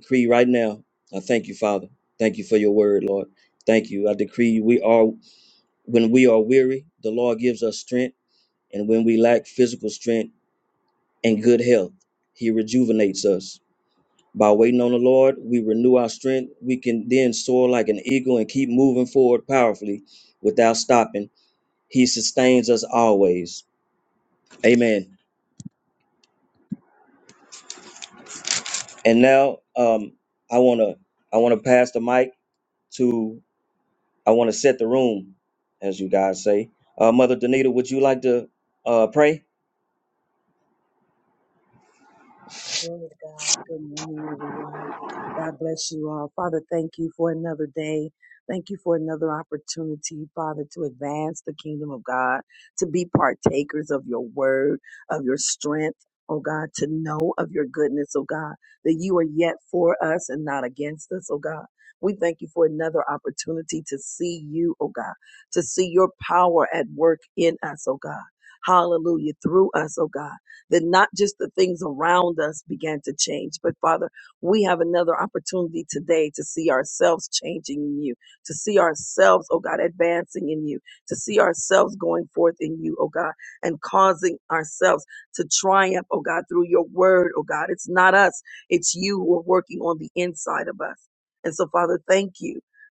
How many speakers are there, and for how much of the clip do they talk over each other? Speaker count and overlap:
2, no overlap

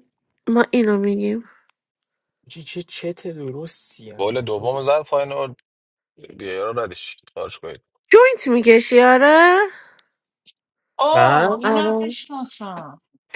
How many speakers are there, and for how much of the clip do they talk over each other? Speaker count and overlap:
4, about 7%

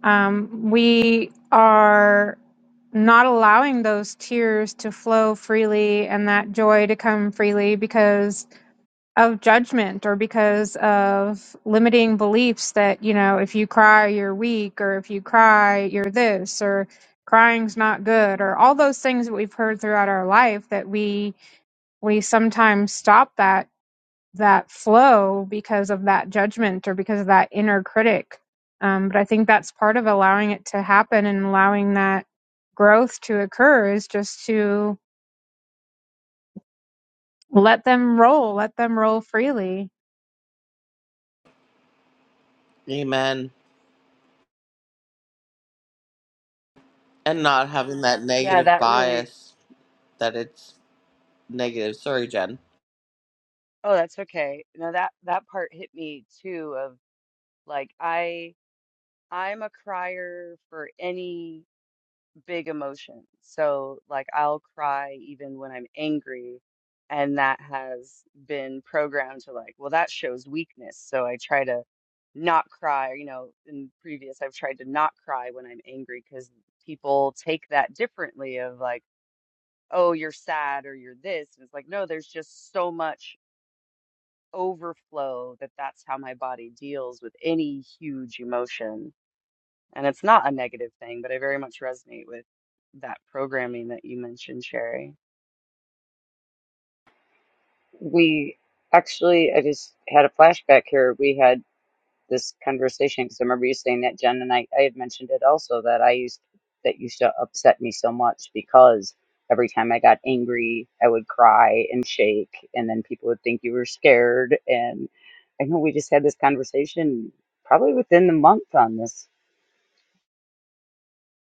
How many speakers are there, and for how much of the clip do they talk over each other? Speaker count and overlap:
4, about 1%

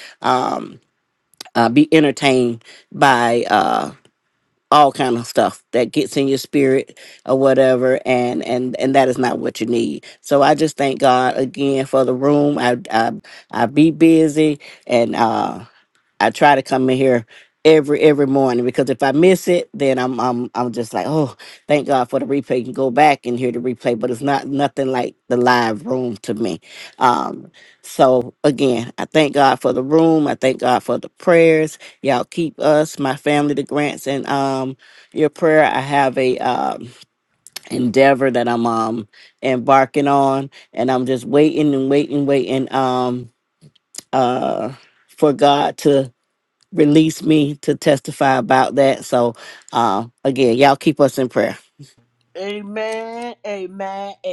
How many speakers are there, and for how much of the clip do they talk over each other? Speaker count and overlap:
2, no overlap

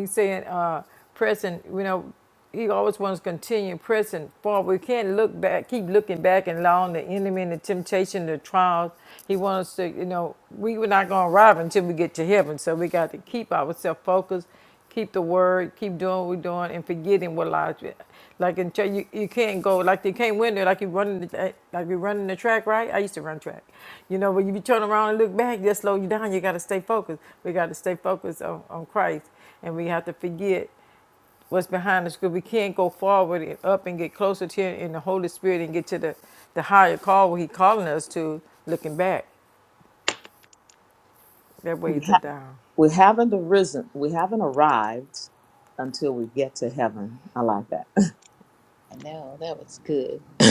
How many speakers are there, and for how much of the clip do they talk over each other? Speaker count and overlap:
3, about 1%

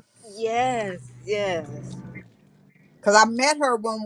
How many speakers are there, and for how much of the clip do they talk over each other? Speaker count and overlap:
2, no overlap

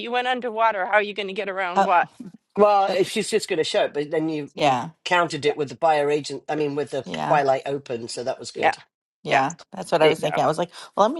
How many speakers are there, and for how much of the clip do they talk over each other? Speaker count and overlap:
3, about 15%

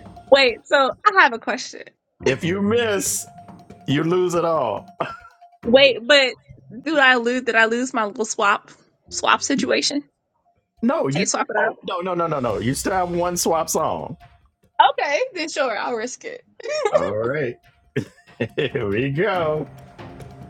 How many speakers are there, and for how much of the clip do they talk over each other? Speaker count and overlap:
2, about 3%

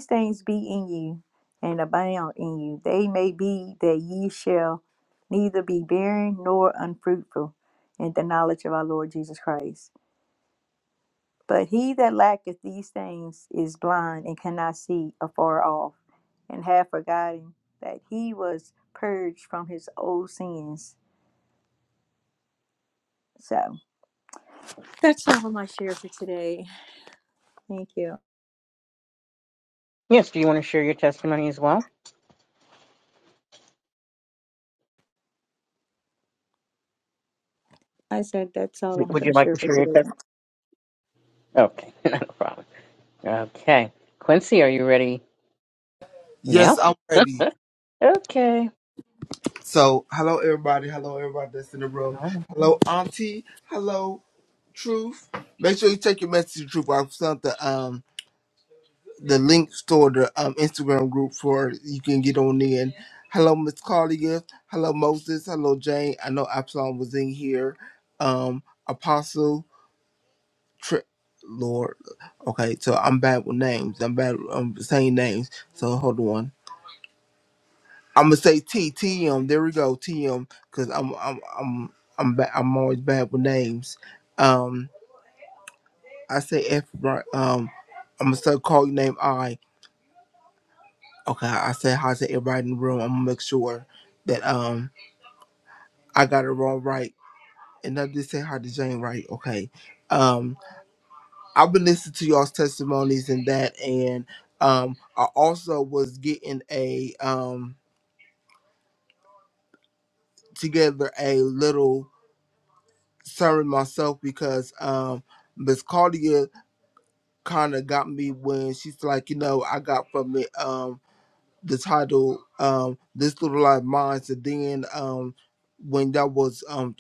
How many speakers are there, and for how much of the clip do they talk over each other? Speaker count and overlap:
3, about 1%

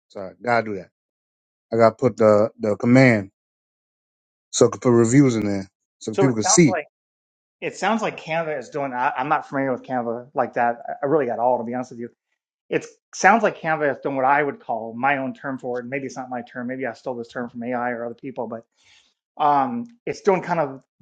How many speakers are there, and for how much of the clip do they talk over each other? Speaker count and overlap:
2, about 3%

